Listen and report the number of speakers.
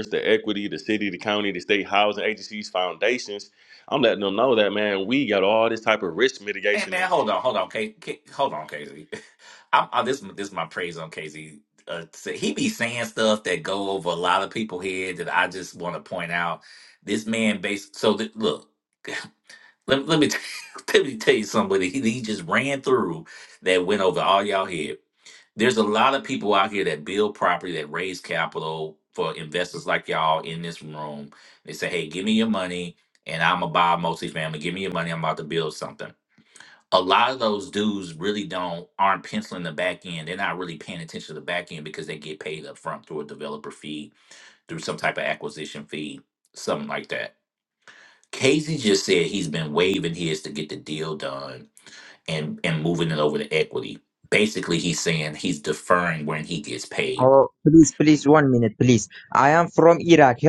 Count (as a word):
three